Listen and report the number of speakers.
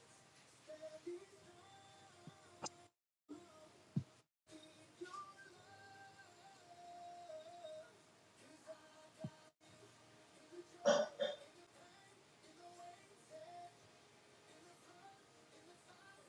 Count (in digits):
0